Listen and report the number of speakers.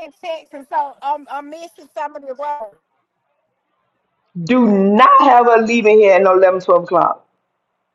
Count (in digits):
2